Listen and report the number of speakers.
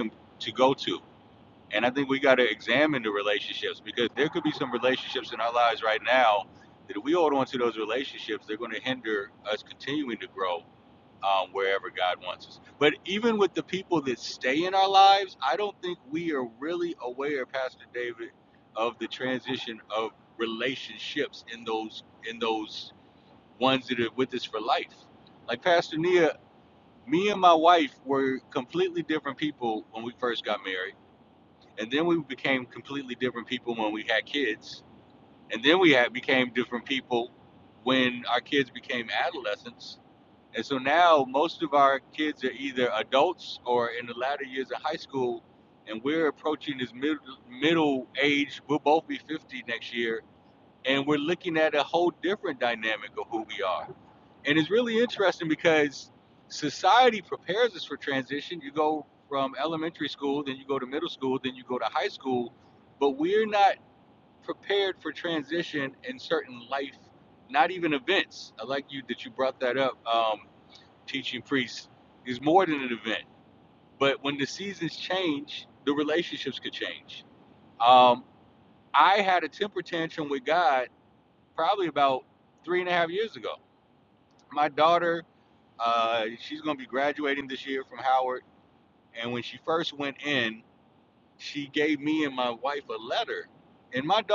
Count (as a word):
one